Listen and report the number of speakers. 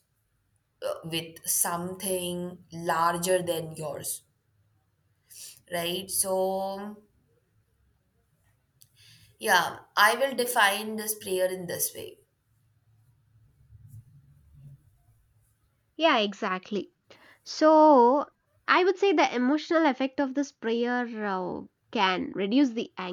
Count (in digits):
2